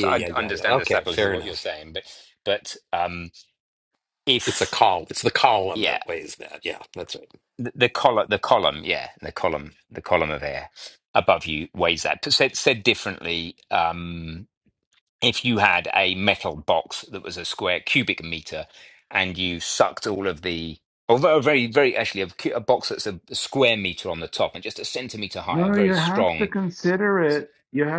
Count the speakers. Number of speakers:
3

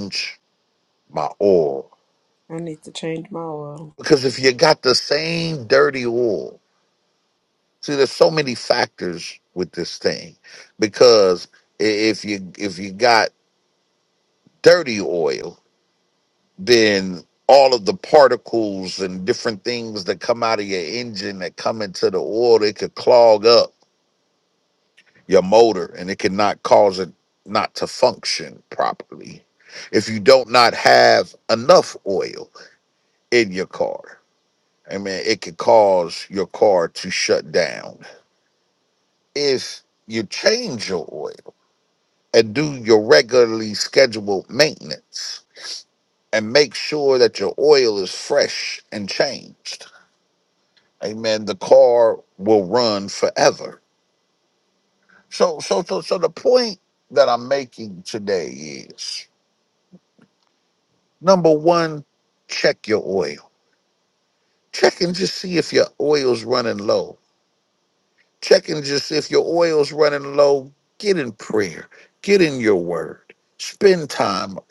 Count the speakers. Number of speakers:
2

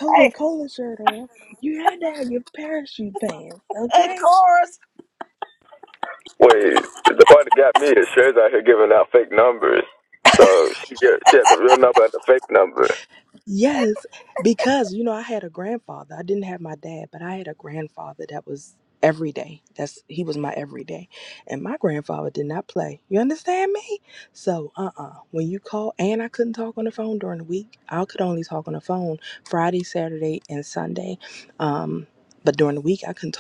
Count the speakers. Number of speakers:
3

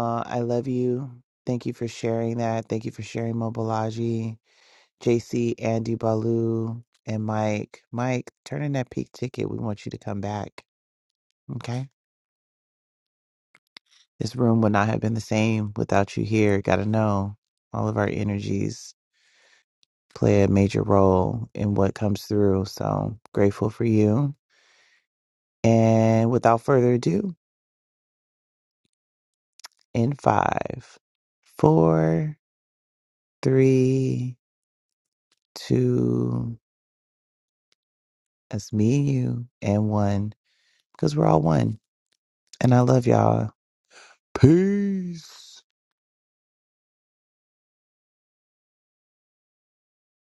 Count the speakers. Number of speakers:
1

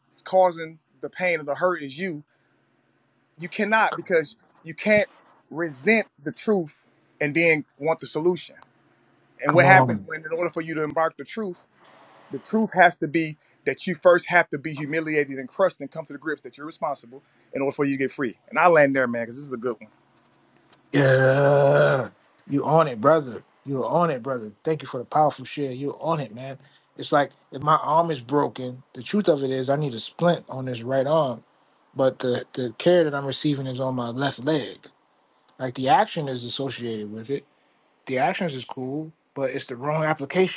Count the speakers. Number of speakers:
2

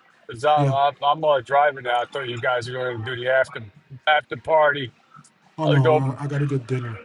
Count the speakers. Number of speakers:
2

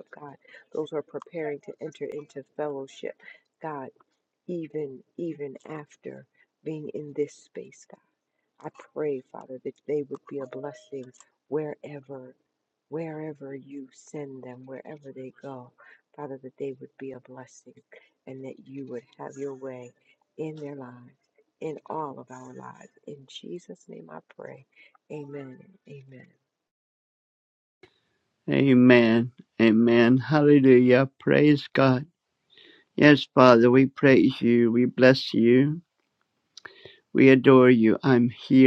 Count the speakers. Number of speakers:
2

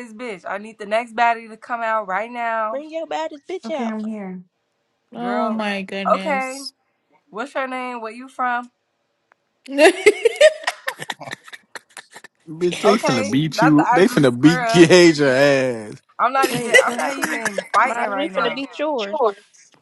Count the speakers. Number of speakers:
5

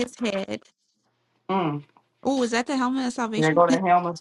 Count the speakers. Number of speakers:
2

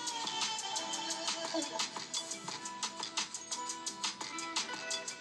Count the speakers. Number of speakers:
0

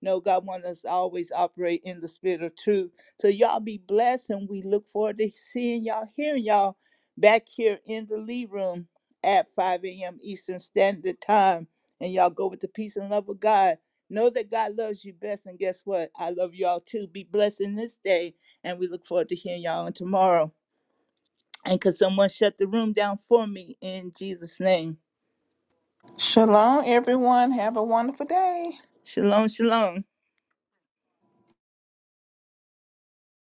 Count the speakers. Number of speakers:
2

